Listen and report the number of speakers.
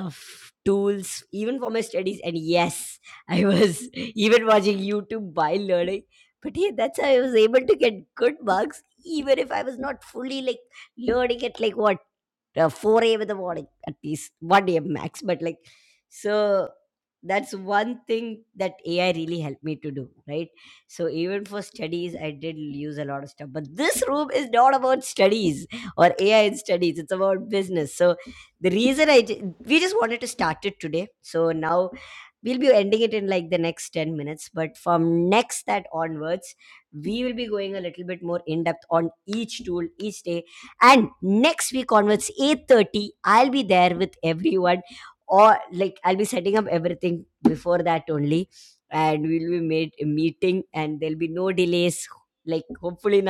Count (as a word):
one